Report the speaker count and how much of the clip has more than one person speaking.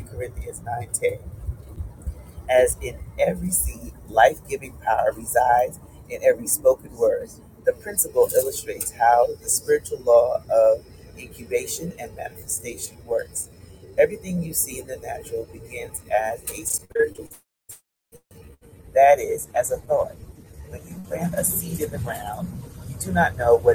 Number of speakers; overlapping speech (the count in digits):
1, no overlap